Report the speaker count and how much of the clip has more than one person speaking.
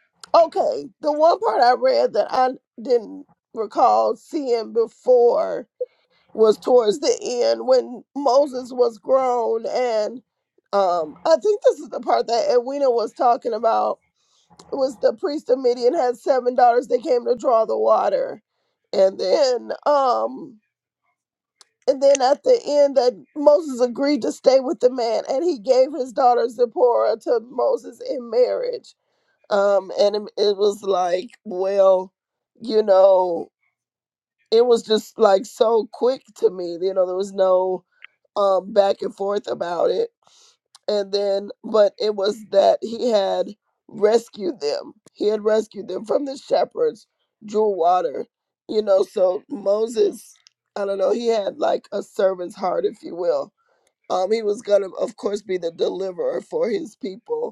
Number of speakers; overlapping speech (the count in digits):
1, no overlap